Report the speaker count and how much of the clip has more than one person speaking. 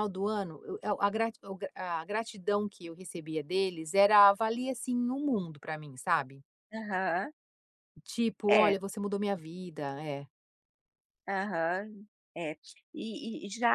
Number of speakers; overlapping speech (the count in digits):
2, about 2%